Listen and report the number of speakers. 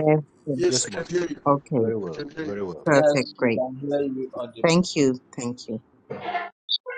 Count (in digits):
3